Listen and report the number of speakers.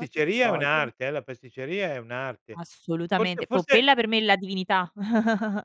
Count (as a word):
two